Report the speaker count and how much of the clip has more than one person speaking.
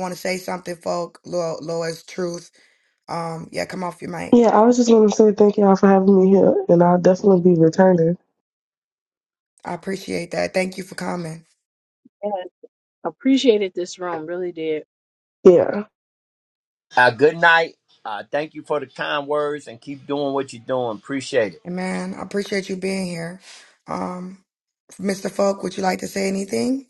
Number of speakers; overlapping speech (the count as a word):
four, no overlap